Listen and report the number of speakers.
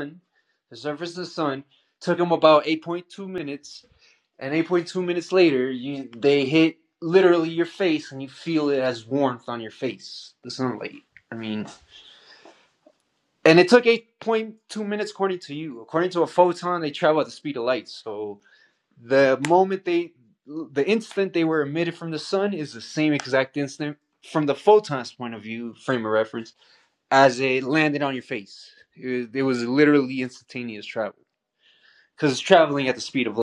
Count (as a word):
one